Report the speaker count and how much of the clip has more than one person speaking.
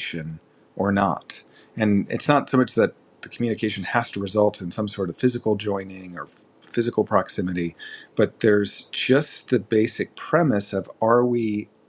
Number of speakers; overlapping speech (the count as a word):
one, no overlap